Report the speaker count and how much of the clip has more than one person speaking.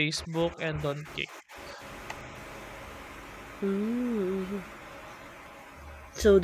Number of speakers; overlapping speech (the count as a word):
two, no overlap